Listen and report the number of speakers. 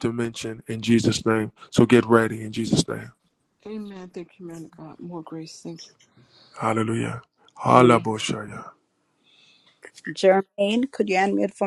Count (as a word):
three